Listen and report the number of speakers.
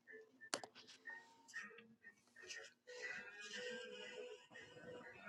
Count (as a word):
zero